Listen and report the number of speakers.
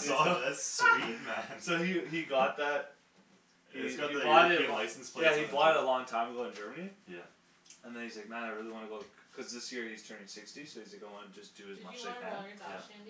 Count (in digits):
3